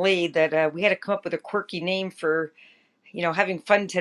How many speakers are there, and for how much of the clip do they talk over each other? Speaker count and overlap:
one, no overlap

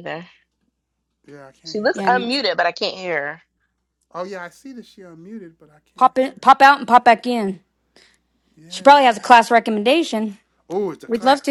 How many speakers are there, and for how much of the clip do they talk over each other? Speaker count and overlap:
three, about 14%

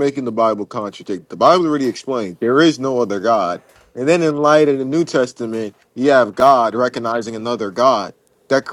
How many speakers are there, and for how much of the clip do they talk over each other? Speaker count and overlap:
one, no overlap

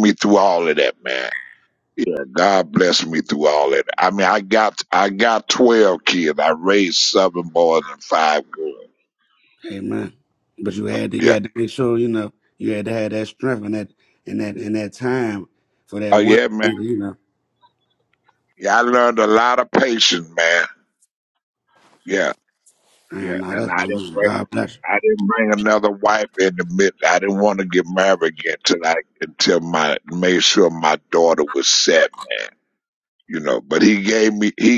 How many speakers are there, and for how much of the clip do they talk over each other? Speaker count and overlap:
two, about 5%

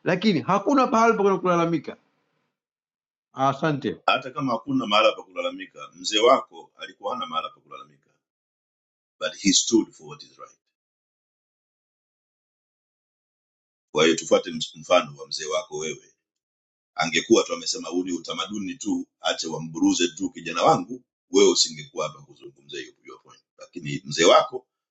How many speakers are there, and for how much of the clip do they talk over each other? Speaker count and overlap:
two, no overlap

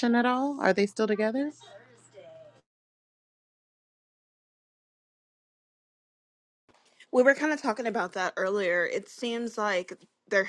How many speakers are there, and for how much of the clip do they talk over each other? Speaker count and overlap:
two, no overlap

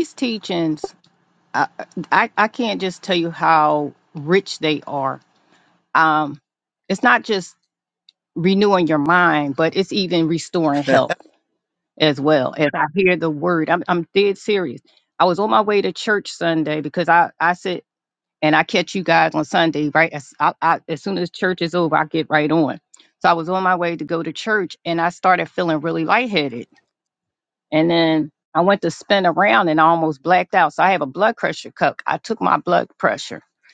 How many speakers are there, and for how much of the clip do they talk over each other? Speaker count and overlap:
one, no overlap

